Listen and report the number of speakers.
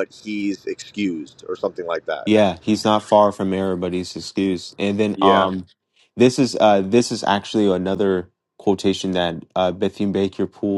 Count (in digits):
2